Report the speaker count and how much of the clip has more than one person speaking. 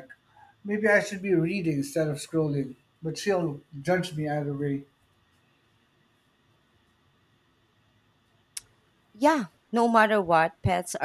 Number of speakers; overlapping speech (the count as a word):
two, no overlap